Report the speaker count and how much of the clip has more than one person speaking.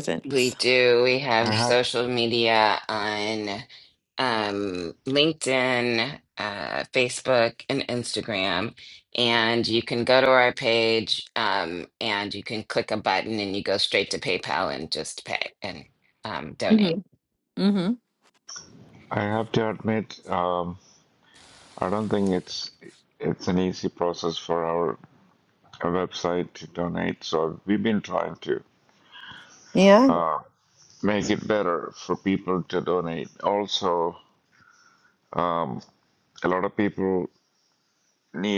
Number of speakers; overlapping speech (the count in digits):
3, about 2%